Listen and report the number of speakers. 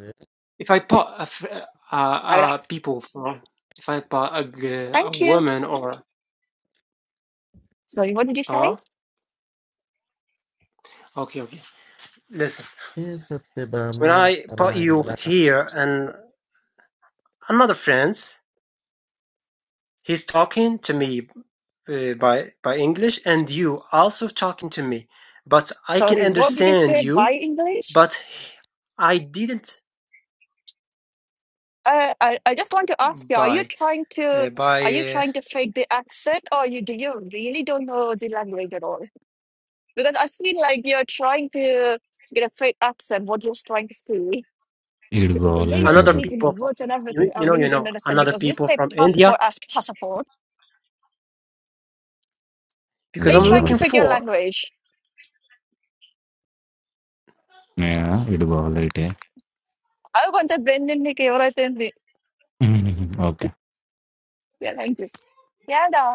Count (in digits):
4